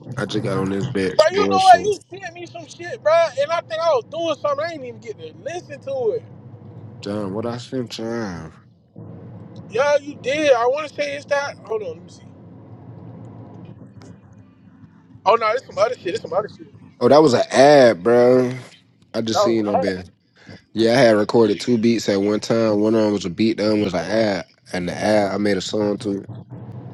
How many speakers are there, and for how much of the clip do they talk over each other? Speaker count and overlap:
2, about 5%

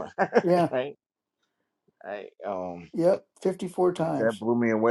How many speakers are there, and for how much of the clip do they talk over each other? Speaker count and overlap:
2, about 4%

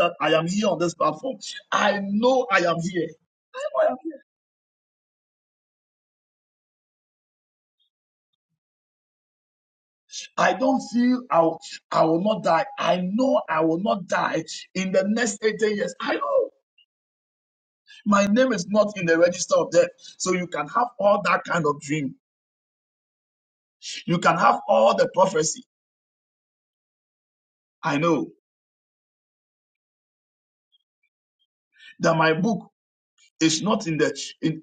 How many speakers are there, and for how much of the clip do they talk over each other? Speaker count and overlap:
1, no overlap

